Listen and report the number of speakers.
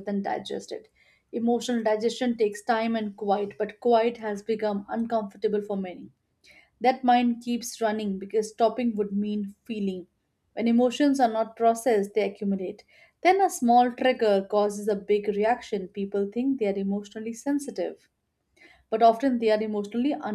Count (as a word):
one